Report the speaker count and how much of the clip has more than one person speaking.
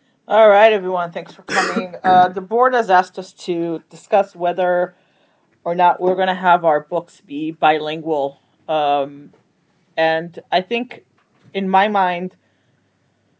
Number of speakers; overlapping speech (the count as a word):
one, no overlap